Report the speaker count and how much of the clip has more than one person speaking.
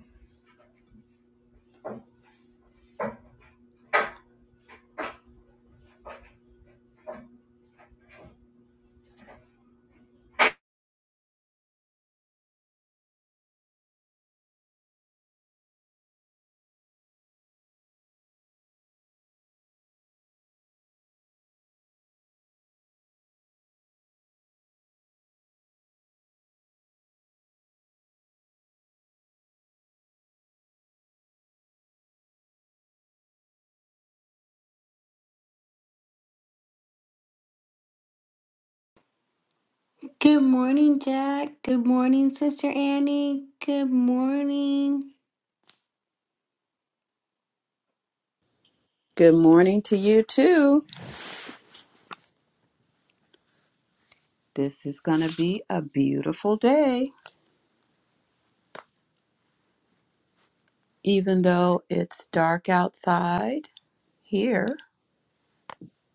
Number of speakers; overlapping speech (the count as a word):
two, no overlap